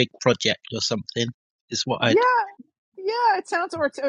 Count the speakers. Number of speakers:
2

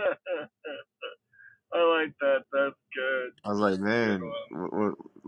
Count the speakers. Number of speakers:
2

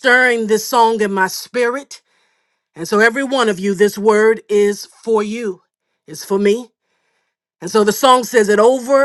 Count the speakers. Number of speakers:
1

